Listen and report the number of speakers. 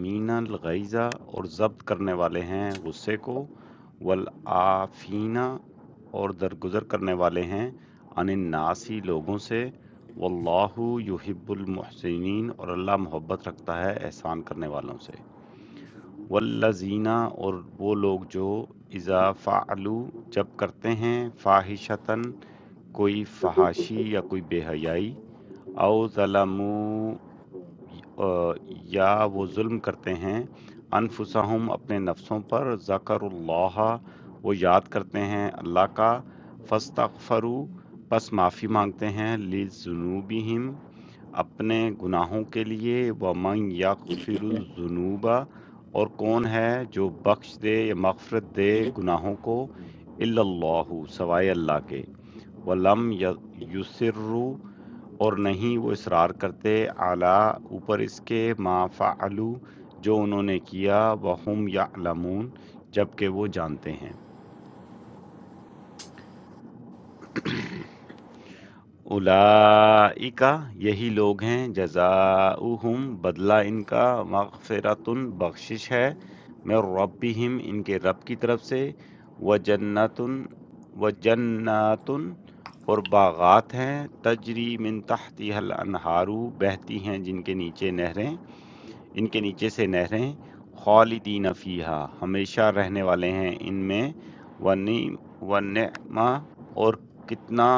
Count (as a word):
one